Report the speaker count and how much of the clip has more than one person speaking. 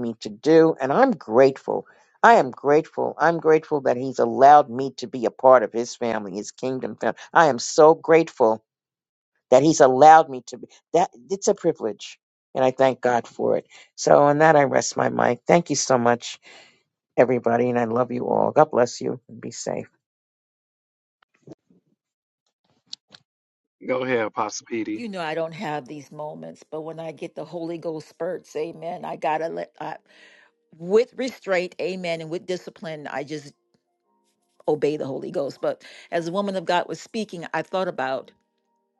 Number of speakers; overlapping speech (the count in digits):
3, under 1%